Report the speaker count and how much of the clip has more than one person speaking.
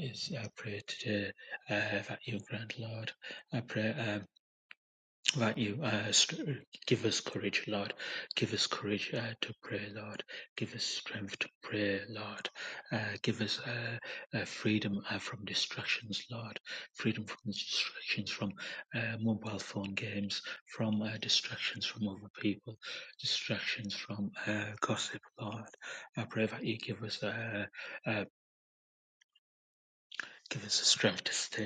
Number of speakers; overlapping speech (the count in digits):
1, no overlap